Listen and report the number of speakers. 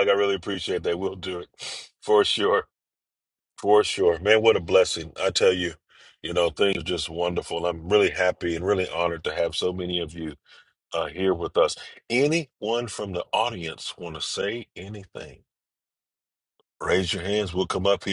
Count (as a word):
one